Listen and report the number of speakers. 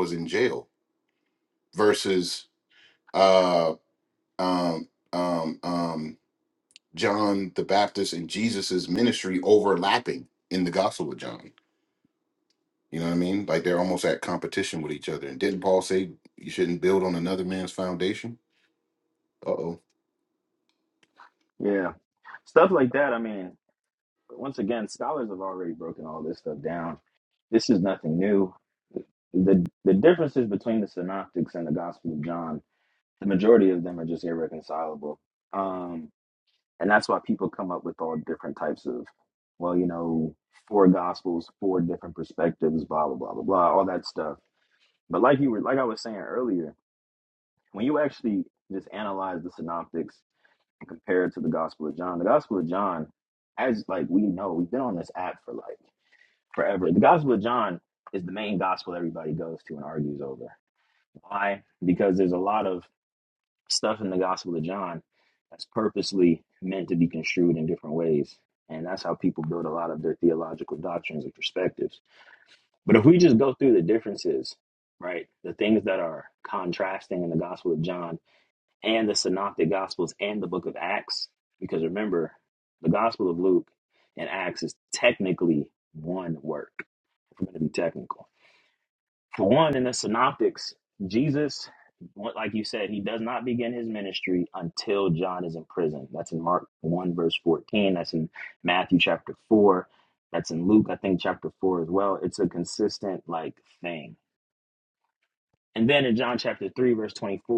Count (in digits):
2